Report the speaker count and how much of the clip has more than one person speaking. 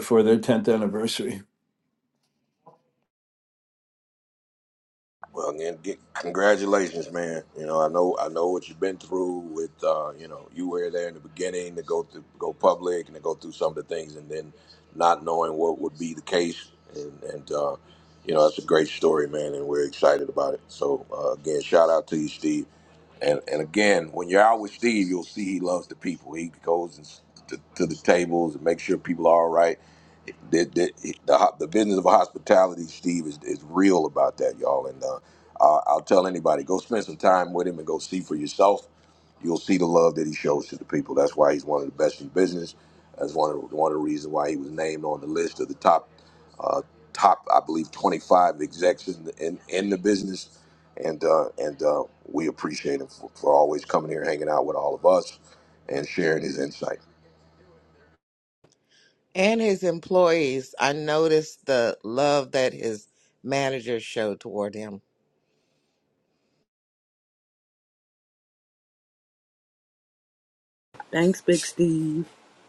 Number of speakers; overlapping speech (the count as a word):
four, no overlap